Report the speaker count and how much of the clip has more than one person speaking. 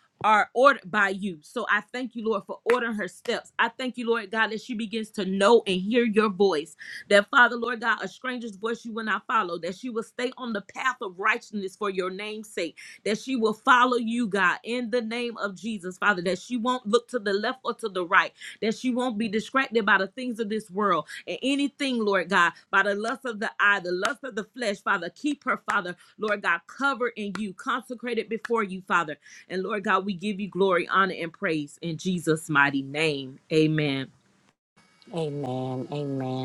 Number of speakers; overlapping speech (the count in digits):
2, no overlap